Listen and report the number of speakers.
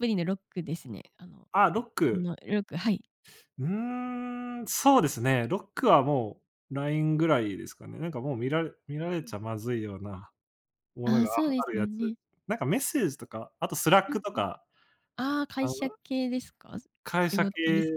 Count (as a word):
two